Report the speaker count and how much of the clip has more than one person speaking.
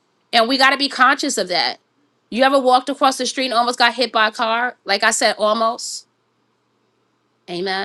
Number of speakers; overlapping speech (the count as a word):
one, no overlap